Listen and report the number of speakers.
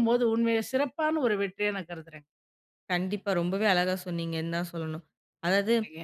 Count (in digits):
2